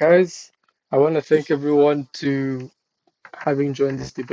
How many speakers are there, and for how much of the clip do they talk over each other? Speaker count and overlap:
1, no overlap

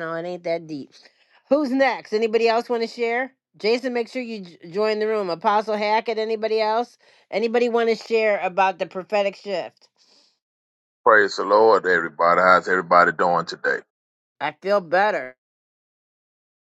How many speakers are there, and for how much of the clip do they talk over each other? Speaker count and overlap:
2, no overlap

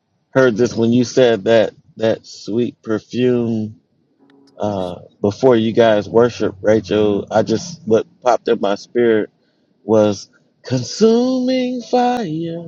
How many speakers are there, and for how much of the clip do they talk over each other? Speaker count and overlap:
1, no overlap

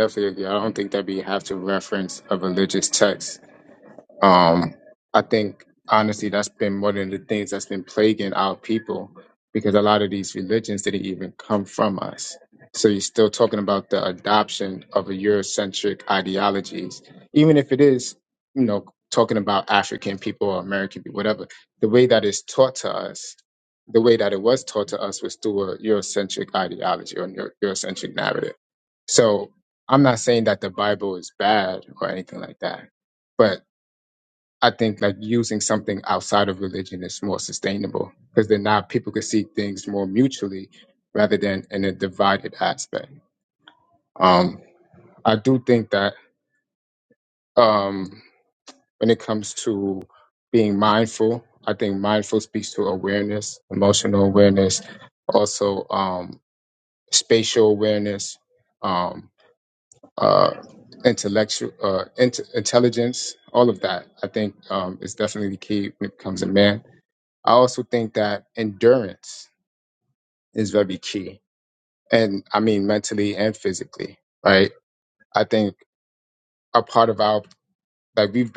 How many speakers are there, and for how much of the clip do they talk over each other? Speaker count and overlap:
1, no overlap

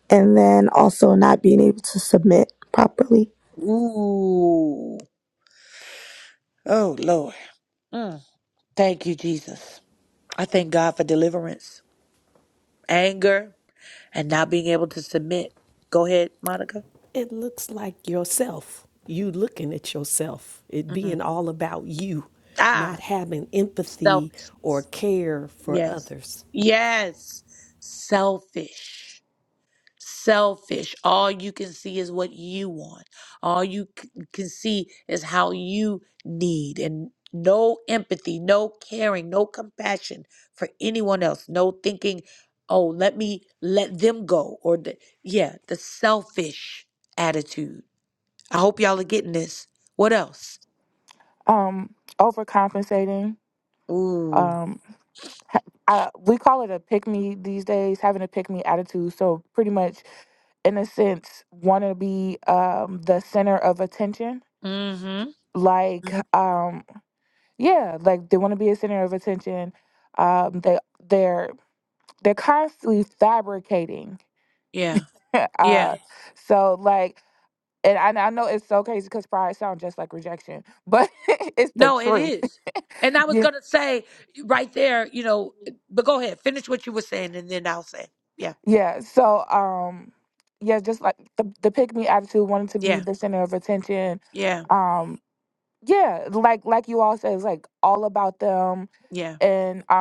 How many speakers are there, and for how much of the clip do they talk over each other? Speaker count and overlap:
4, about 2%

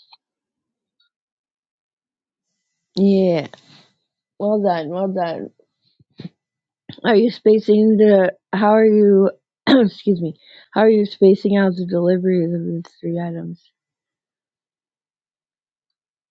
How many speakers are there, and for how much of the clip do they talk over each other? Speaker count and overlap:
1, no overlap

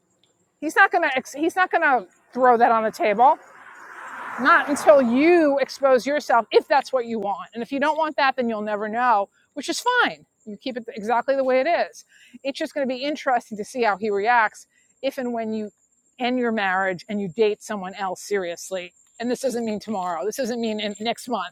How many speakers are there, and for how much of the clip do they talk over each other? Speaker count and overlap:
1, no overlap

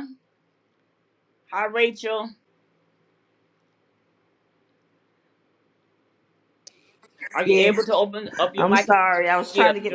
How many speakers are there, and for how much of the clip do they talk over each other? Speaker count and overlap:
2, about 10%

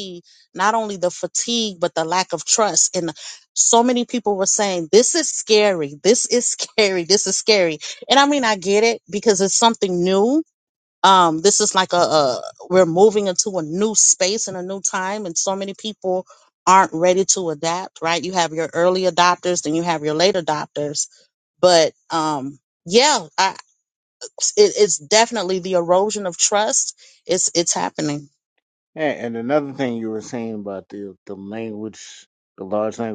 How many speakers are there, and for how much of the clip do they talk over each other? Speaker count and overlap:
2, no overlap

